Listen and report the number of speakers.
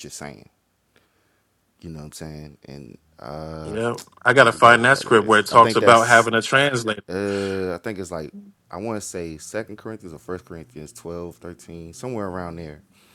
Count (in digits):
2